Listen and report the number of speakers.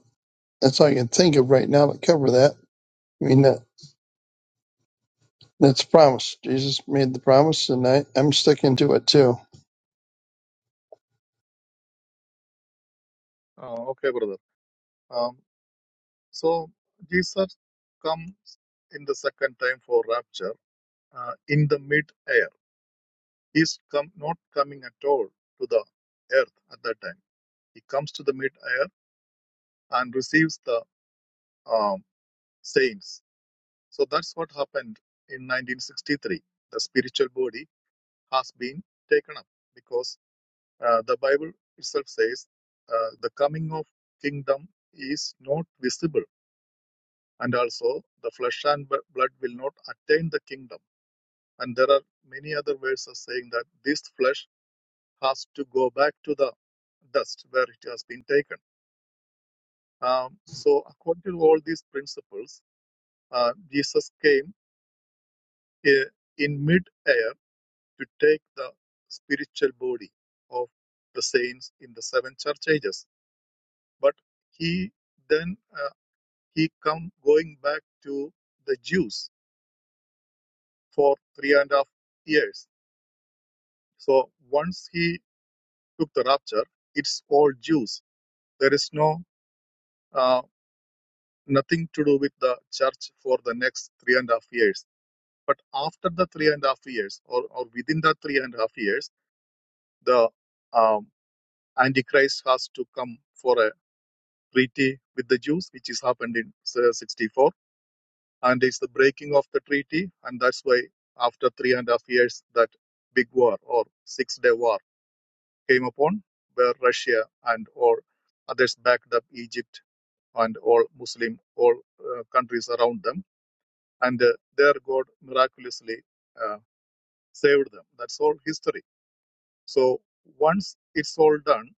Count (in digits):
2